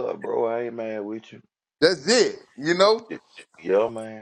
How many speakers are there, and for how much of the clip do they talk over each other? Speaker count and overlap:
two, no overlap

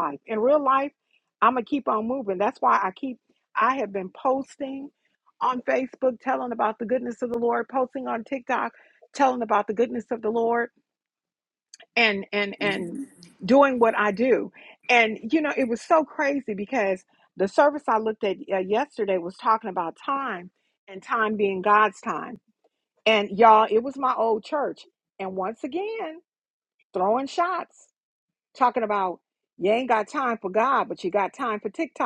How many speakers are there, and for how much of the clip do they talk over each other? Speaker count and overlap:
one, no overlap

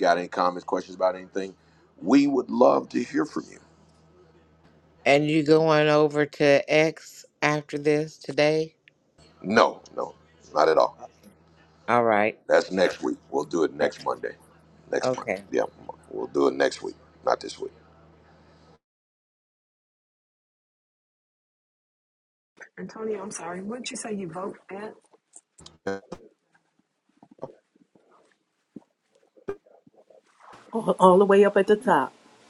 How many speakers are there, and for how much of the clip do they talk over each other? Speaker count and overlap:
four, about 3%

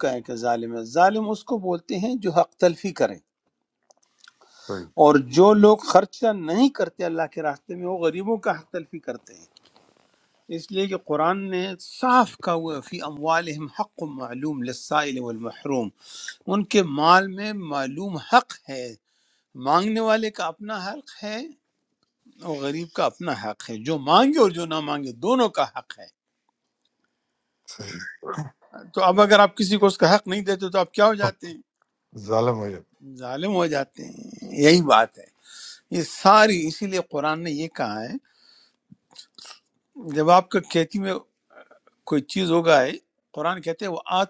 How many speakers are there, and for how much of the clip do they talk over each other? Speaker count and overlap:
two, no overlap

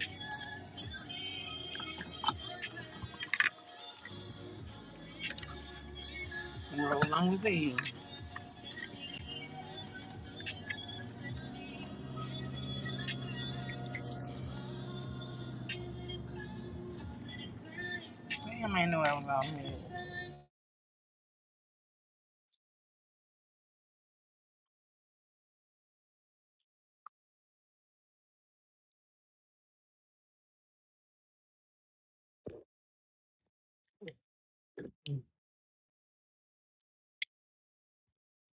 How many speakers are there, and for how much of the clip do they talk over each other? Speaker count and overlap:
one, no overlap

